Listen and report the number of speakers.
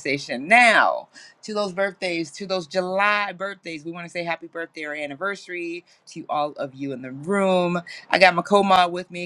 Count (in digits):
1